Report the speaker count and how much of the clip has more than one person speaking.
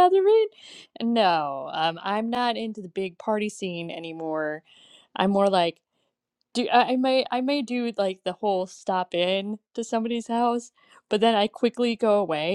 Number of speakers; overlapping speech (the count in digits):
1, no overlap